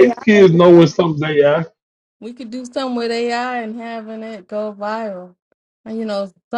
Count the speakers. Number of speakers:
2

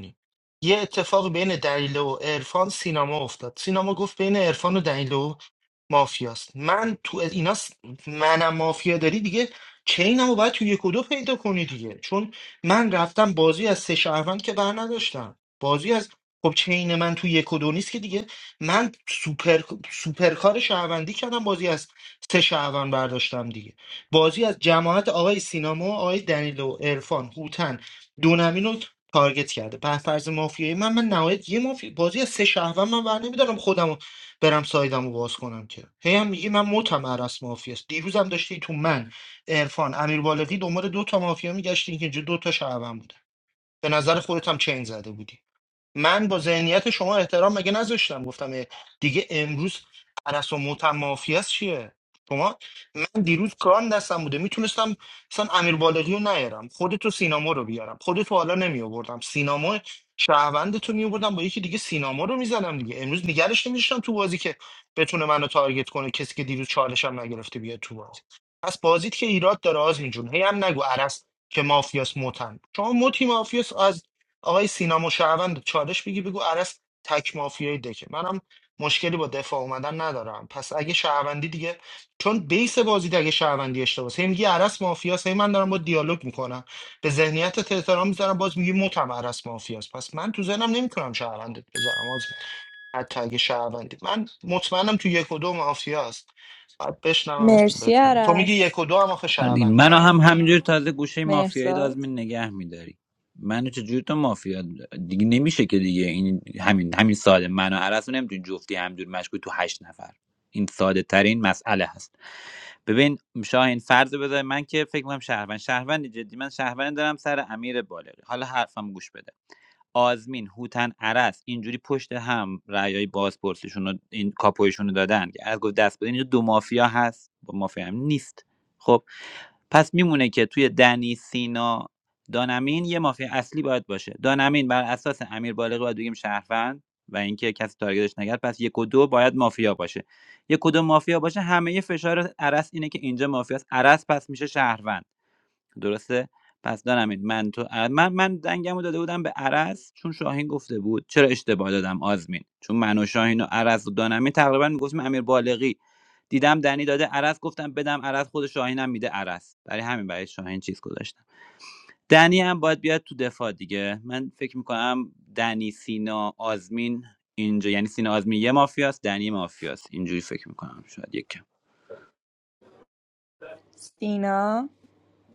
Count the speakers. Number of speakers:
3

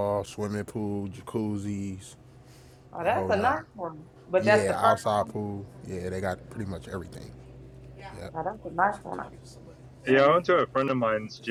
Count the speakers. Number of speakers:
3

